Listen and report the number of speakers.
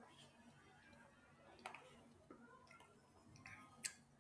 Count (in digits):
0